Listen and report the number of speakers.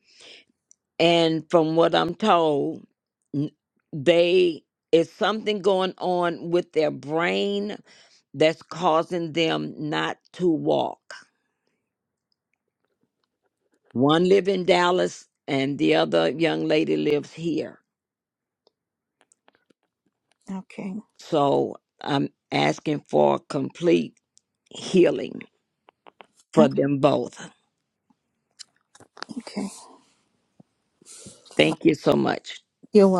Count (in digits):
2